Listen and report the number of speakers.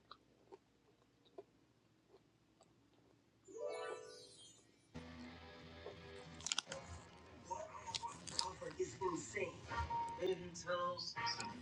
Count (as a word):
zero